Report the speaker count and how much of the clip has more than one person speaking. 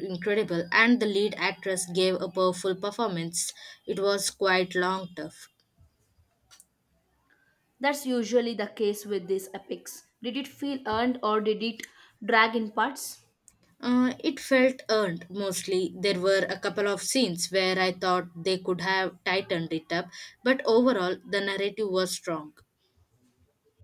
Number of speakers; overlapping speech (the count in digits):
2, no overlap